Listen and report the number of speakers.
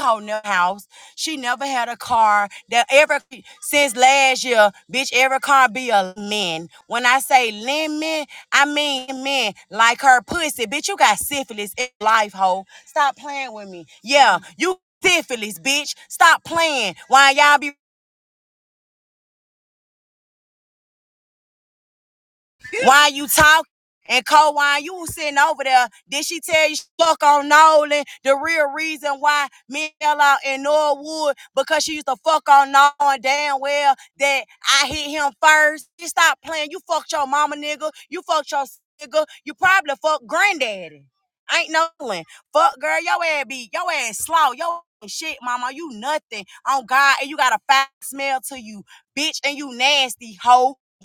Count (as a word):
one